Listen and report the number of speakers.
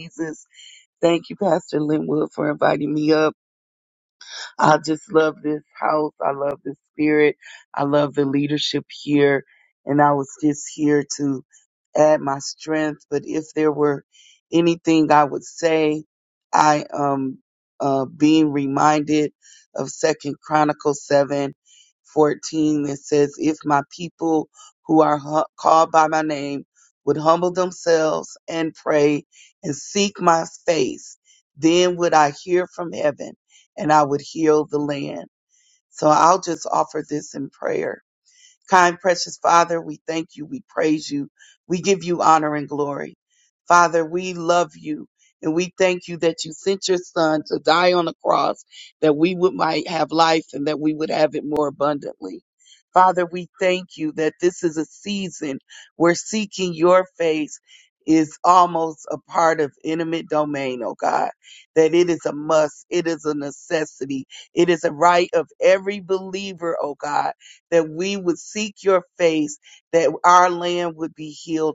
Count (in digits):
1